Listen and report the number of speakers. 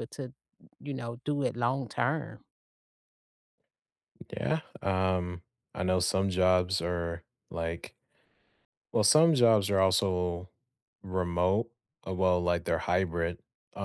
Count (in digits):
2